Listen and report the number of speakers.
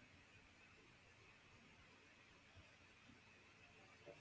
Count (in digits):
0